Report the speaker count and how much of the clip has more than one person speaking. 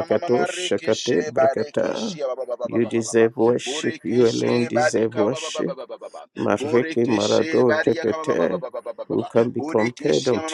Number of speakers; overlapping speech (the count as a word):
two, about 79%